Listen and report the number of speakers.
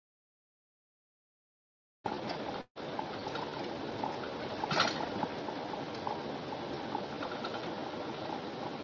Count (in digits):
0